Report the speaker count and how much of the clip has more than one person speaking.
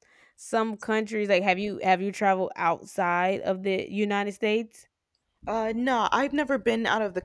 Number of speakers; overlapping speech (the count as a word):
two, no overlap